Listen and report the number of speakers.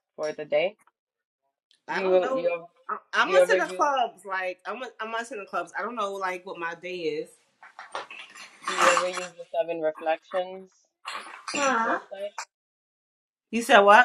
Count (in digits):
2